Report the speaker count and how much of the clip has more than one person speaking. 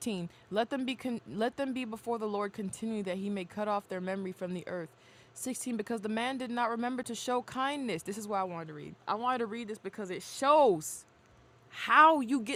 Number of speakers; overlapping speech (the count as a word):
one, no overlap